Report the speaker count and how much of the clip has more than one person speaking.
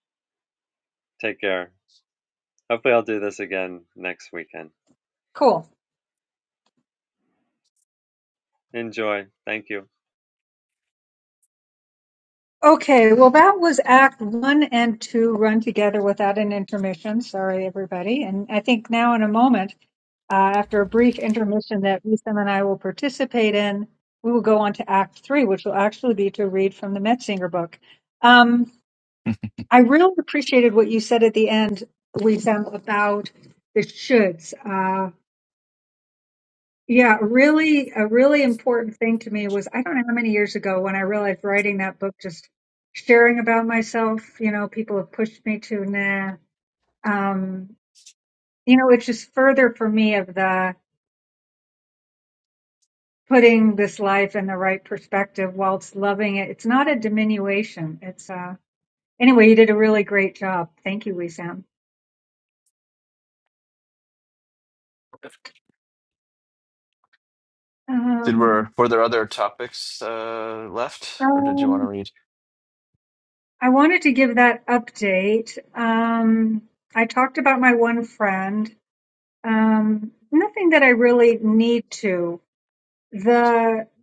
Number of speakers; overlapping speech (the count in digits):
3, about 1%